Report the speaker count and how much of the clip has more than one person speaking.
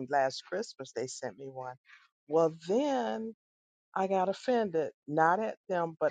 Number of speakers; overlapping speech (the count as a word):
one, no overlap